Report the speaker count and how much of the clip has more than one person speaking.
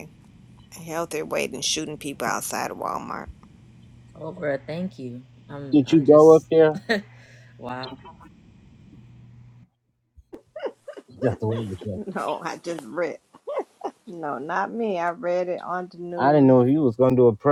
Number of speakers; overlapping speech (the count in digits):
3, about 5%